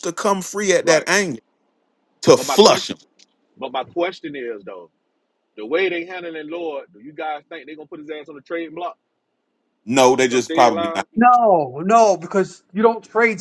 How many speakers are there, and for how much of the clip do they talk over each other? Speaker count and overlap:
three, about 10%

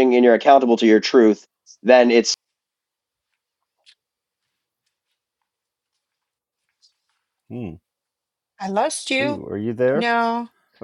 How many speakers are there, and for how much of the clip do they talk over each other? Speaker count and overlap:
three, about 3%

